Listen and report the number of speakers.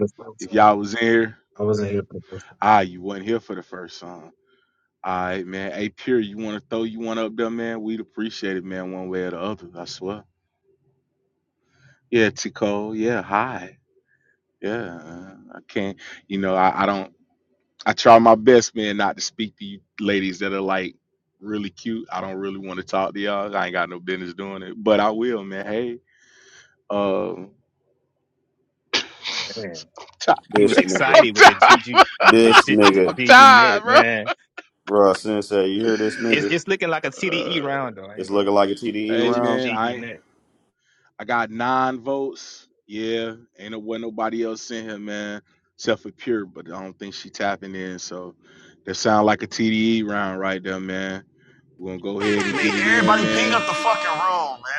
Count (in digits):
5